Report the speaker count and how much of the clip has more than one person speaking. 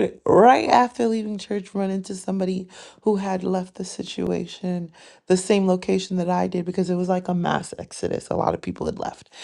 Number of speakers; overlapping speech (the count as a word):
one, no overlap